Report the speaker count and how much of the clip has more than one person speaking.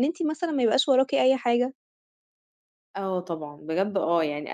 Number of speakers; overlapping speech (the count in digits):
2, no overlap